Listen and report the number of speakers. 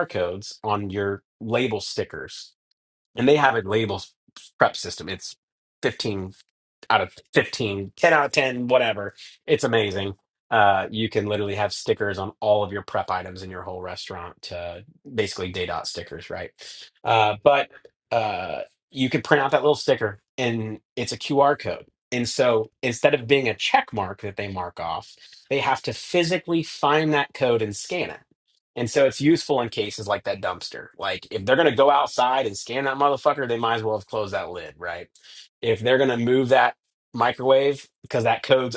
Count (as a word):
one